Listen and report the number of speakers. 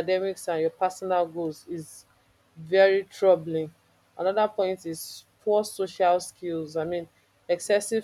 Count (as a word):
one